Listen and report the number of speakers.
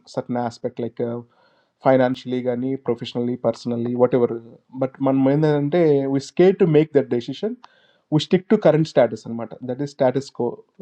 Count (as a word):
one